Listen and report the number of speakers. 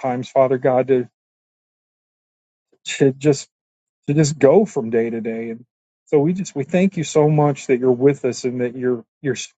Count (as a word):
one